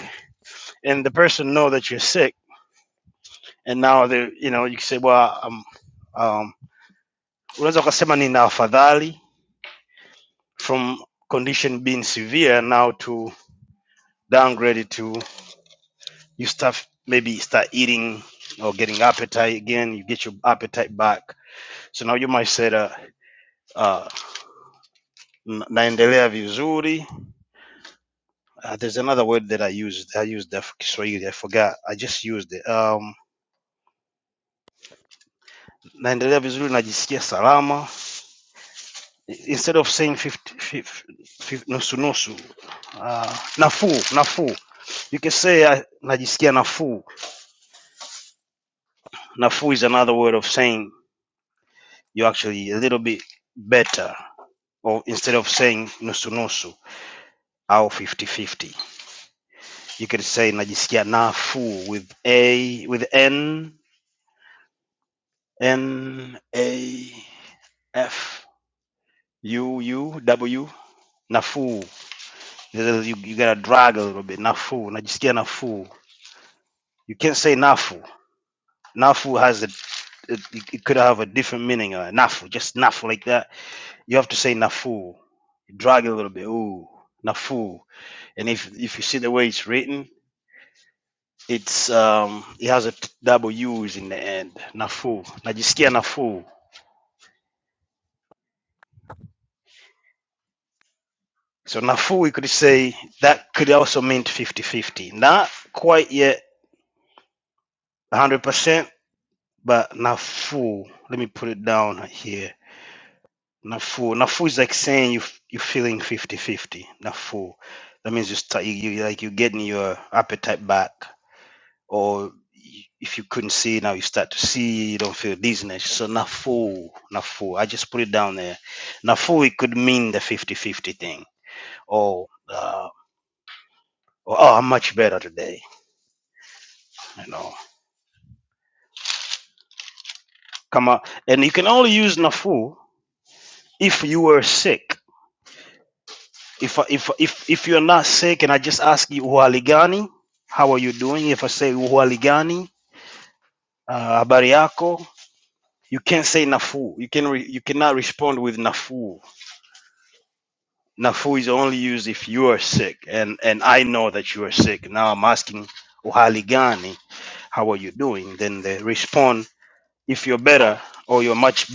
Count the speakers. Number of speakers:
1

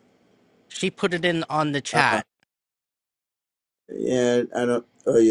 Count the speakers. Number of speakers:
2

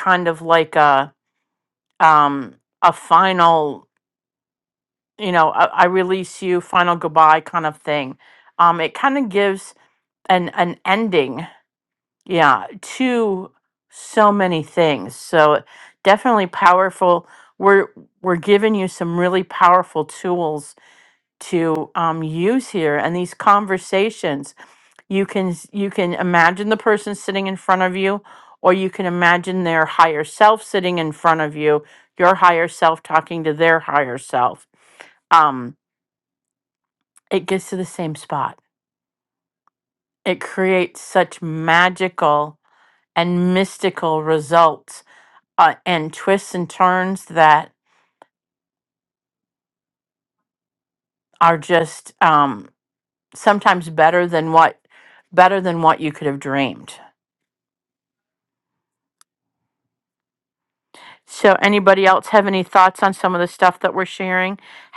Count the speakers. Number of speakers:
1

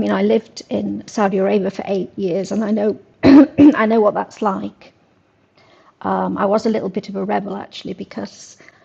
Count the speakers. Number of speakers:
1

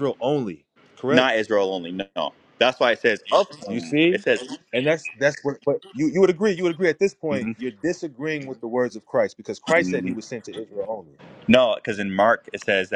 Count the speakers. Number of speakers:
2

